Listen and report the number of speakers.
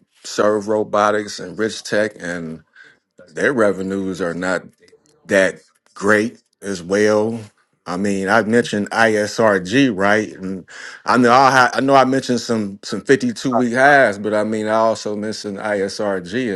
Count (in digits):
1